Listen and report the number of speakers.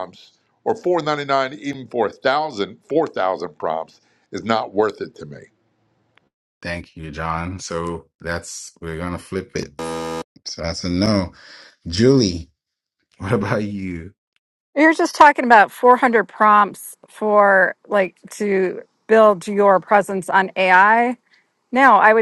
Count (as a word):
three